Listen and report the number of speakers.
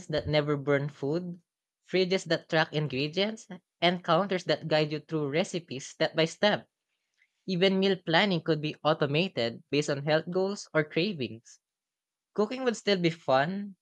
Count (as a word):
one